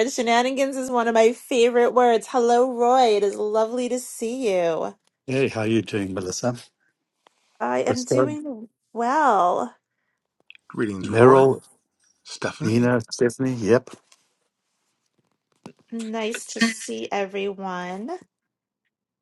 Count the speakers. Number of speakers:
three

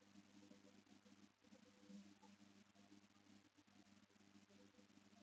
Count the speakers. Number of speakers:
zero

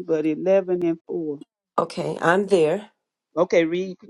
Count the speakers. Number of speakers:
two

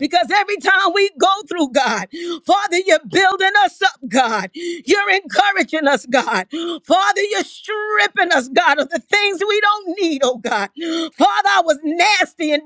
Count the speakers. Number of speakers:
one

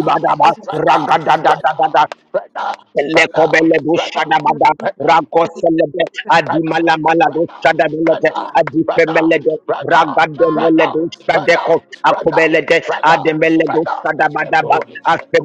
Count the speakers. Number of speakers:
two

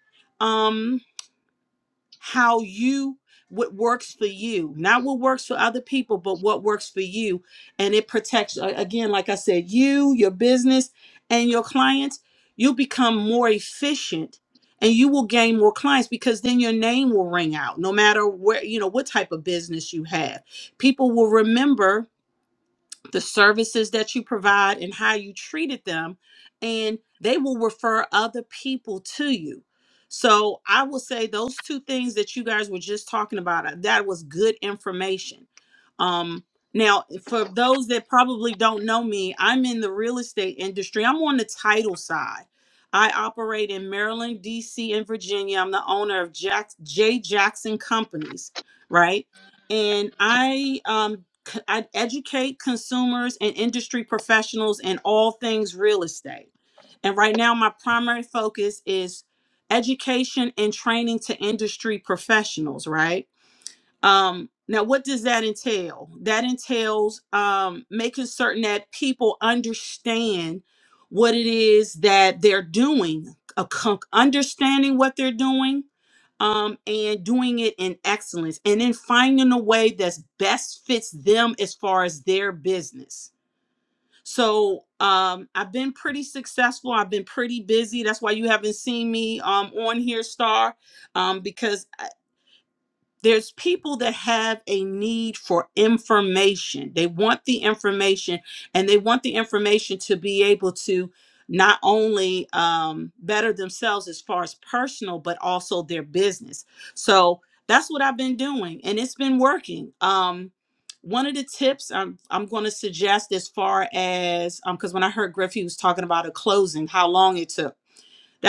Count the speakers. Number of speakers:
one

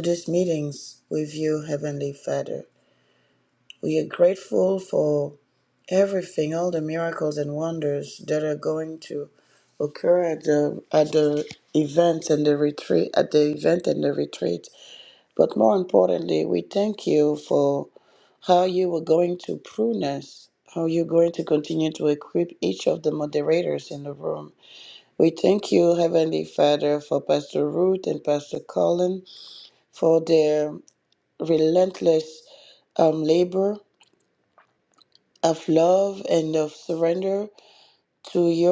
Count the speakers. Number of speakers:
one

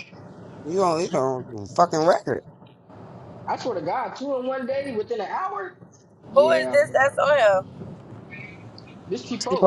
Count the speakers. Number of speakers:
three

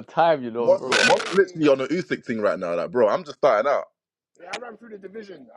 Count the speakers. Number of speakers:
three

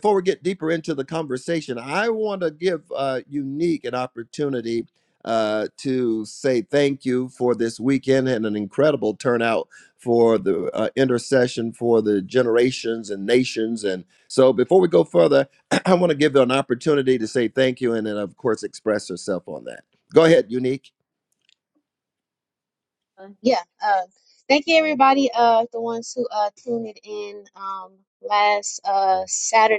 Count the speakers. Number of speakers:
two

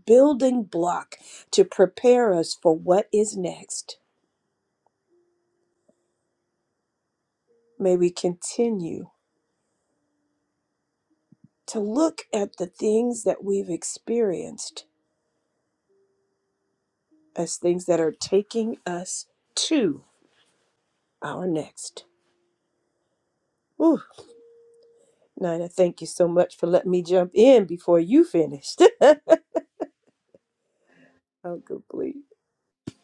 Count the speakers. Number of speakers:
one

